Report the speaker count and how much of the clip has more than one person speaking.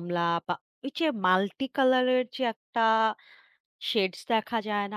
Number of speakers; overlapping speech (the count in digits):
1, no overlap